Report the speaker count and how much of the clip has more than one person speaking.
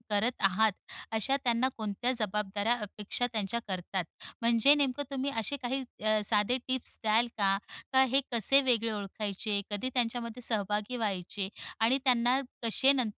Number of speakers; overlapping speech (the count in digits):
1, no overlap